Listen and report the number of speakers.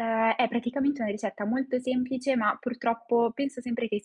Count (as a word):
one